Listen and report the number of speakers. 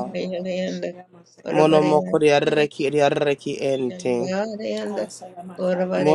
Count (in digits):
3